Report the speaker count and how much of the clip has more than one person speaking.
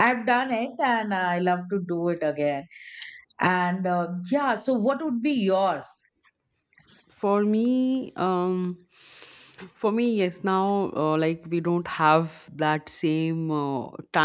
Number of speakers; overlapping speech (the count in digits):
2, no overlap